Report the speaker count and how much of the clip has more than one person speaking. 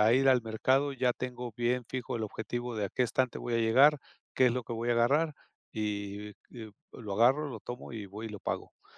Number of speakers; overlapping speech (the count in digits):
1, no overlap